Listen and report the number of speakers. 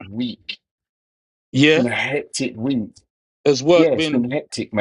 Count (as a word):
two